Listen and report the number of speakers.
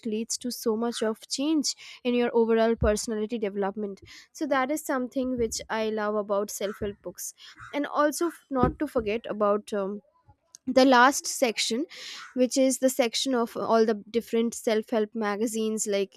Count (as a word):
one